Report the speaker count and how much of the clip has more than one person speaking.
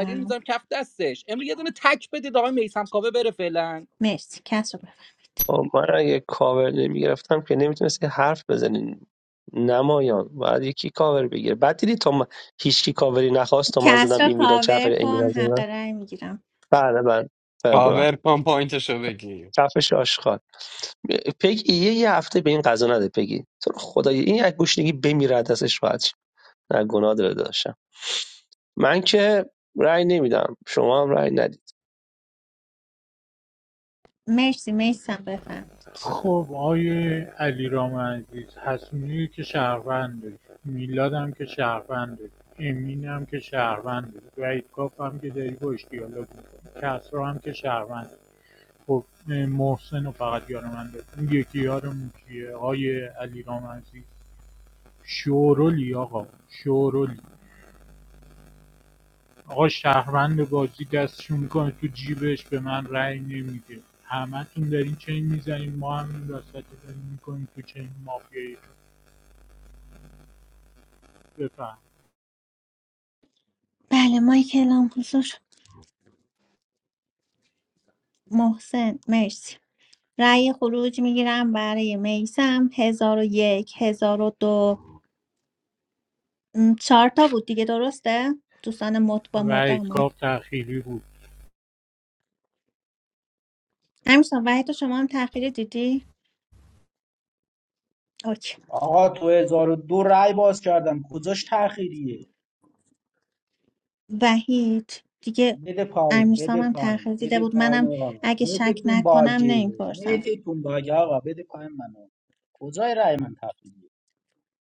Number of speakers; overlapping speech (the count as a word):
six, about 6%